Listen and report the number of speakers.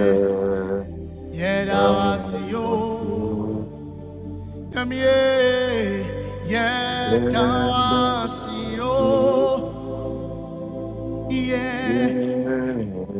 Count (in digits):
2